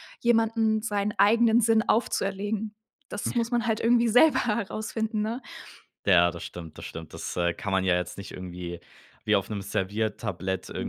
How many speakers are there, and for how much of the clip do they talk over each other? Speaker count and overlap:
two, about 1%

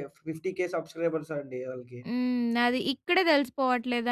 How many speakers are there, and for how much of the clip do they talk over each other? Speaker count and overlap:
two, no overlap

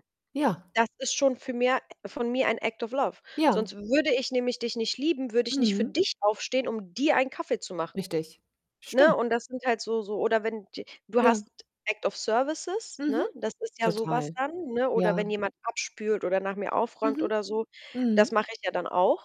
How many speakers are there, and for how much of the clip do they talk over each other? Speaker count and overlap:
two, about 13%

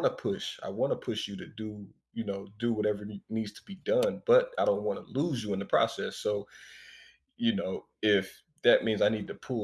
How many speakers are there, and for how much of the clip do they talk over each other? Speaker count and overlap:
one, no overlap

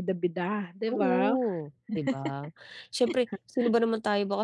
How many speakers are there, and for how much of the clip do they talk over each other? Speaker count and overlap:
two, about 11%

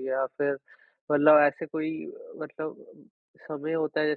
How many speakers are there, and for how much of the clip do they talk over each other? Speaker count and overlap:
one, no overlap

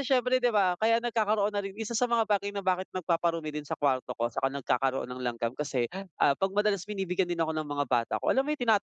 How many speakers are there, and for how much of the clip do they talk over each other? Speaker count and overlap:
one, no overlap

